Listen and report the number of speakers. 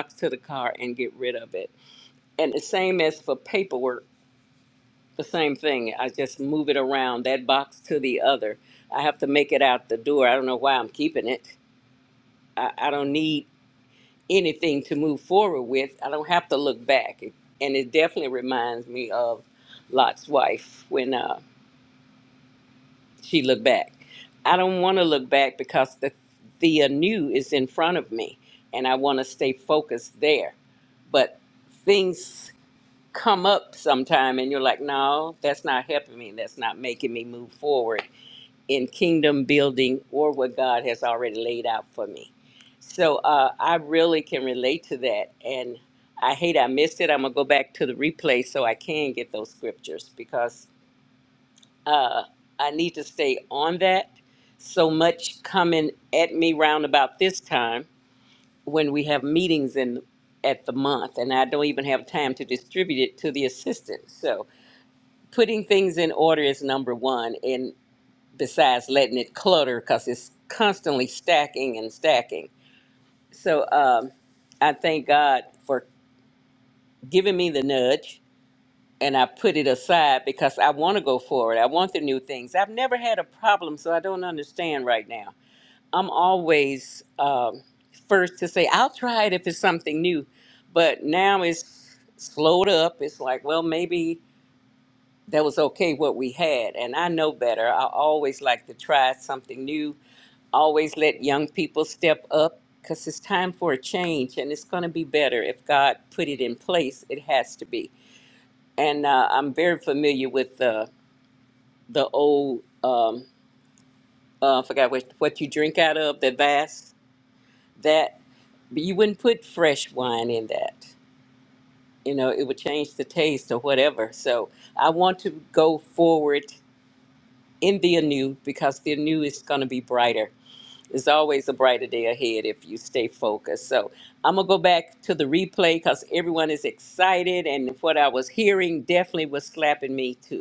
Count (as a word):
one